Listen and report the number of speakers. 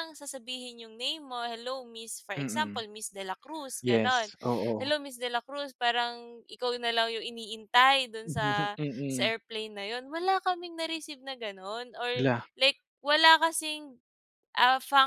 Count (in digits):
2